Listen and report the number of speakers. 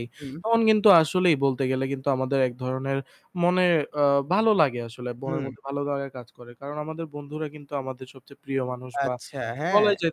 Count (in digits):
2